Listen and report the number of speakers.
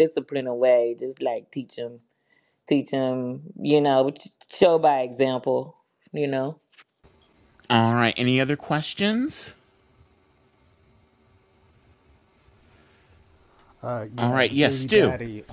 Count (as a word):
three